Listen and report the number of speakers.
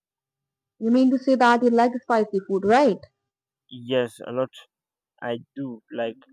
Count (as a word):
two